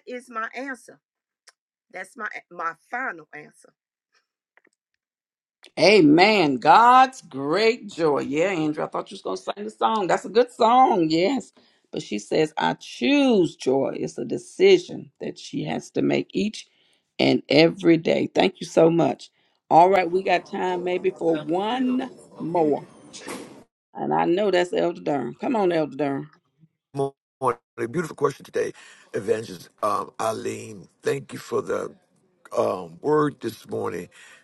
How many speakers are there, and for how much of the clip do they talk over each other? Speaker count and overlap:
3, no overlap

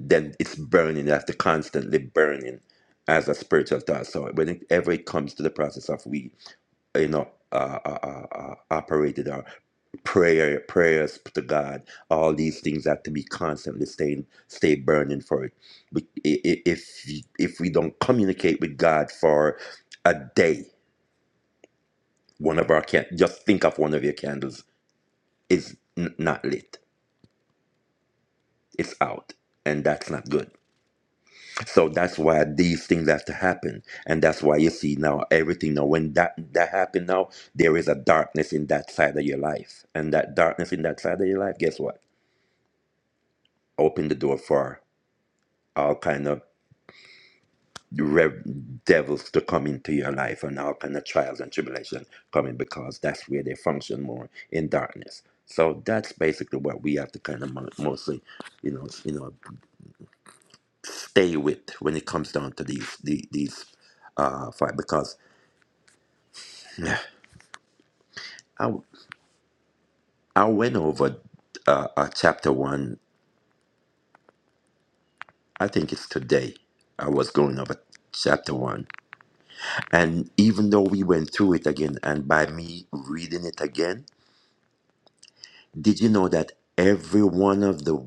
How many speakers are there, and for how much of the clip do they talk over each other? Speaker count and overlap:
1, no overlap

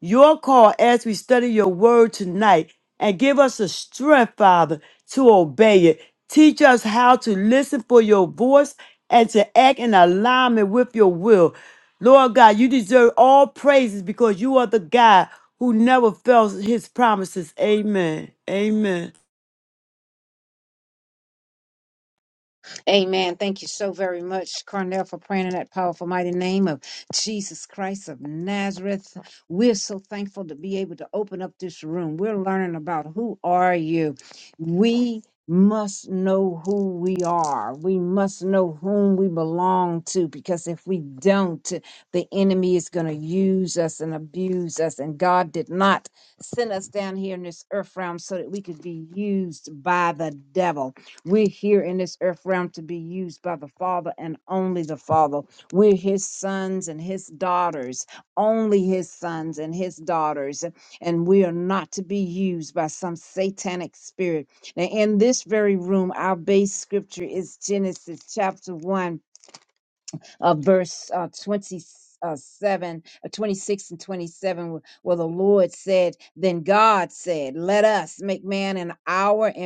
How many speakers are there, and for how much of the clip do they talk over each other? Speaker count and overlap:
2, no overlap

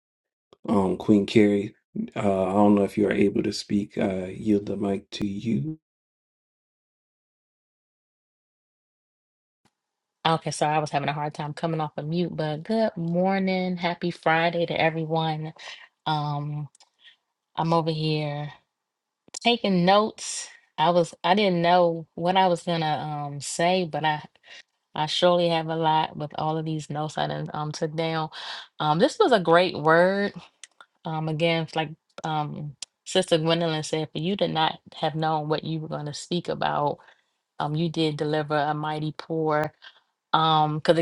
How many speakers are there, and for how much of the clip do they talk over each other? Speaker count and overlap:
2, no overlap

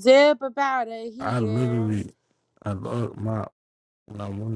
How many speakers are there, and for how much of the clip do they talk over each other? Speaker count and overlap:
2, about 15%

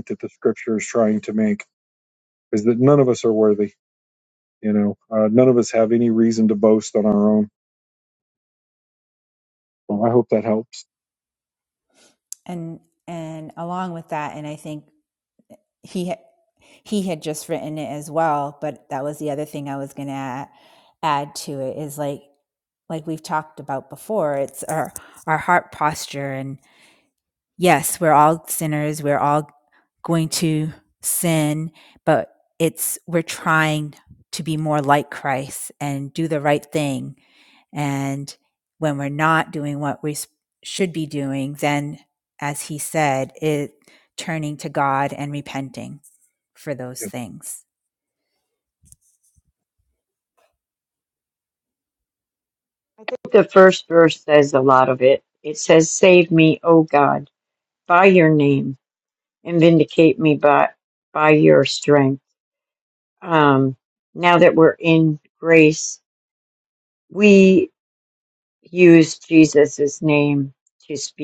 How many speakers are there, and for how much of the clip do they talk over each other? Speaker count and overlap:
3, under 1%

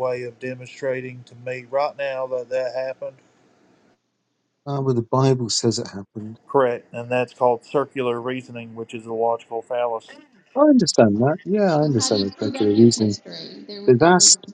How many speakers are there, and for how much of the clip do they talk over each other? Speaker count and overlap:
3, about 16%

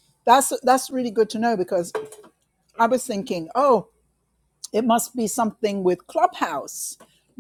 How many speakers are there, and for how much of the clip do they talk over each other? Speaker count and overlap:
1, no overlap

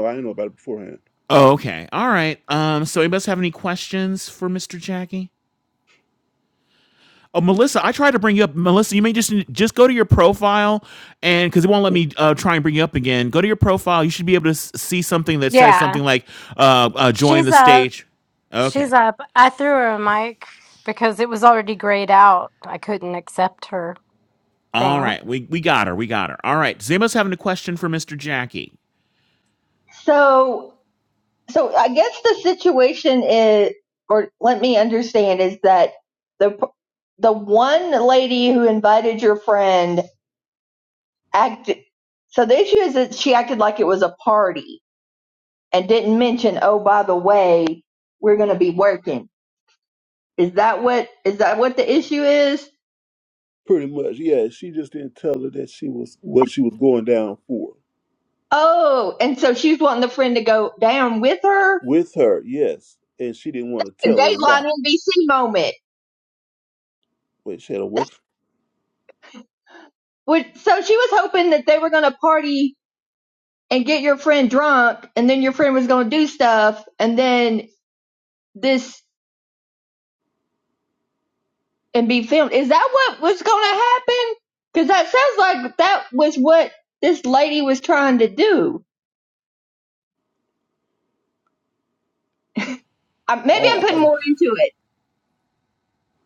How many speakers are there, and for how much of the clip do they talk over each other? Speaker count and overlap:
4, about 3%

